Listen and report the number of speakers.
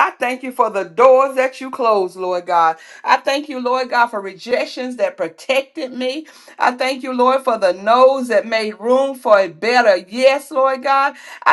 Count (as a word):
one